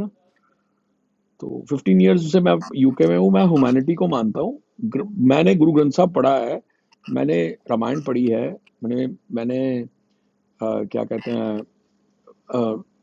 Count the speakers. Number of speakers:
one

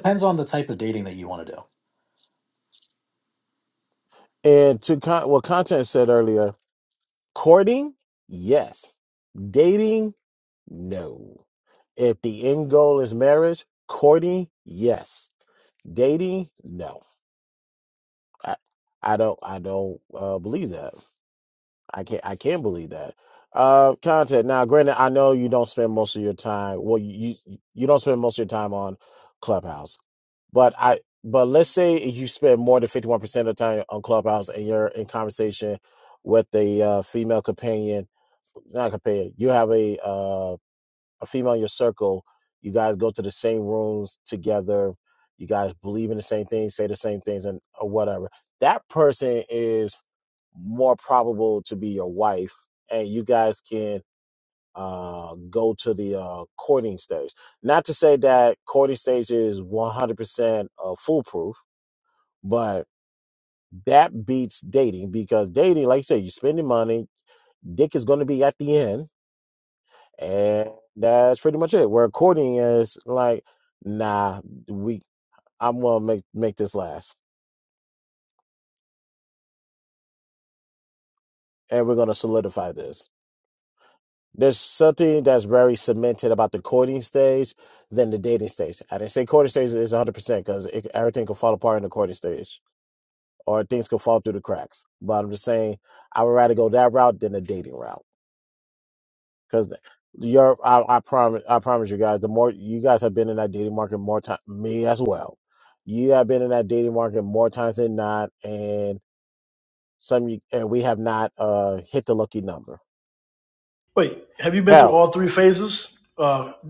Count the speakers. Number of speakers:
three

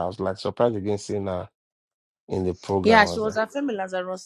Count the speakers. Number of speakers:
two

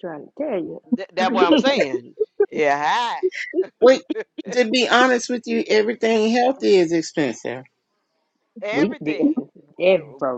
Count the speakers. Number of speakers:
three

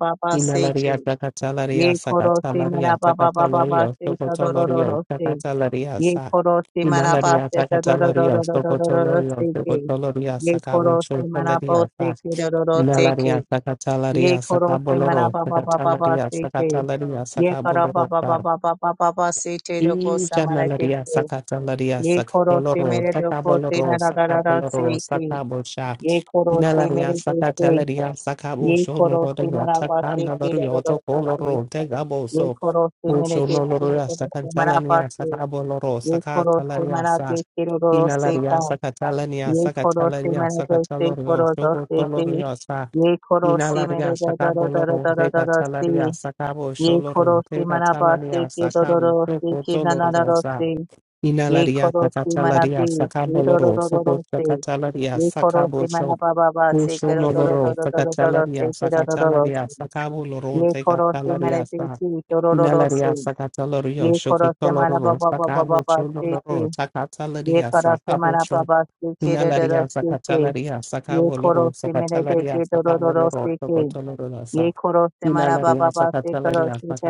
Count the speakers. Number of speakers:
two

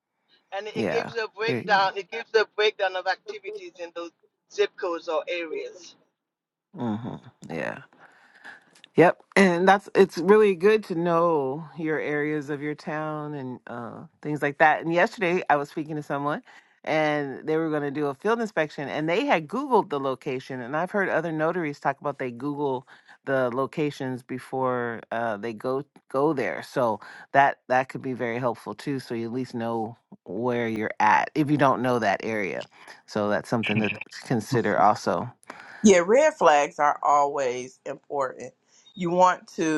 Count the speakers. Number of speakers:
three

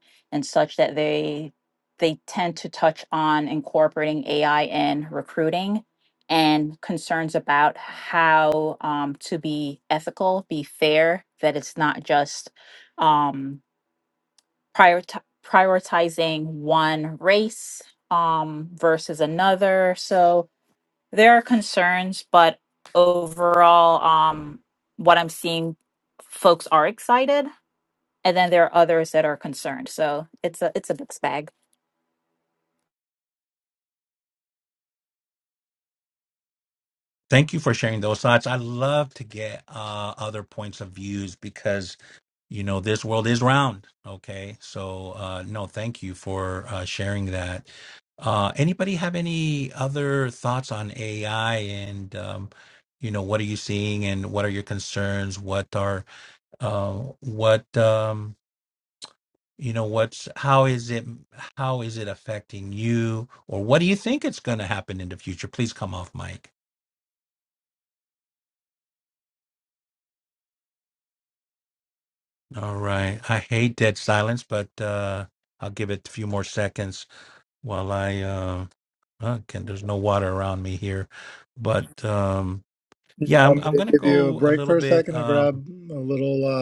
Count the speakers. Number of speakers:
three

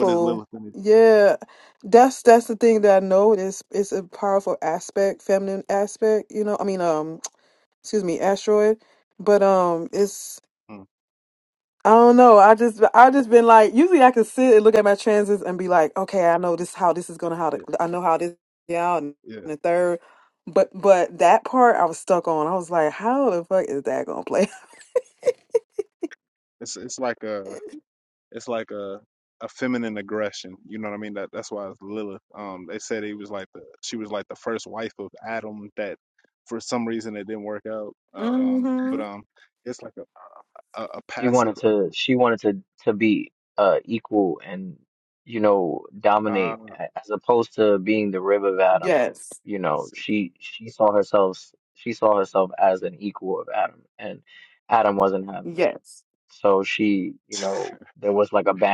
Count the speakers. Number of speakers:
three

